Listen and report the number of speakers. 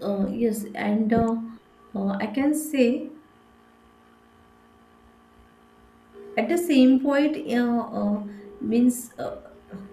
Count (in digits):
1